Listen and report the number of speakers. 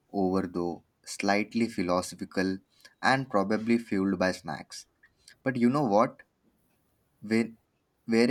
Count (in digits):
1